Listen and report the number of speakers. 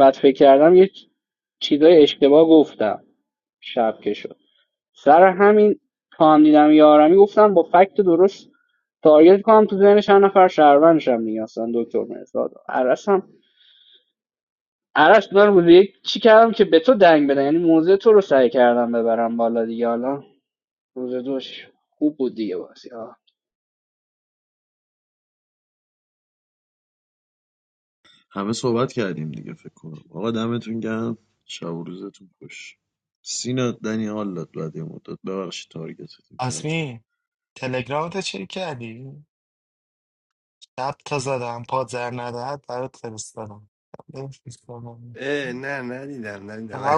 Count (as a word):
four